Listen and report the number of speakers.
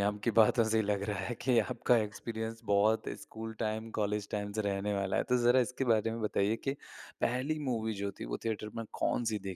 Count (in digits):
1